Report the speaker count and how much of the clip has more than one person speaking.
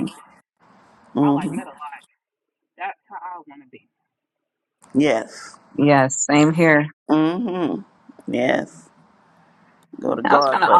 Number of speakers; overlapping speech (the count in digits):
3, about 10%